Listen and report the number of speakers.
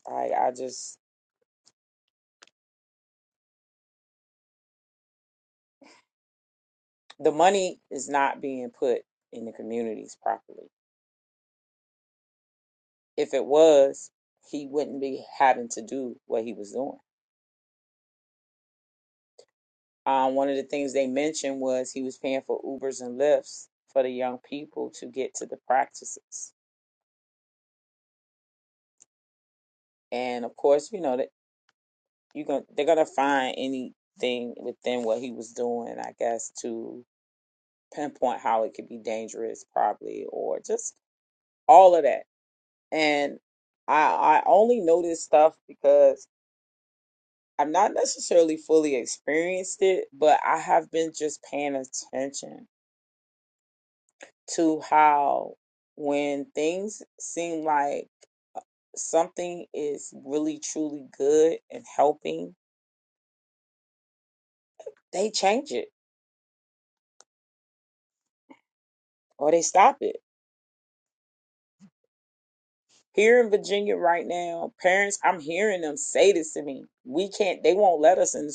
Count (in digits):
1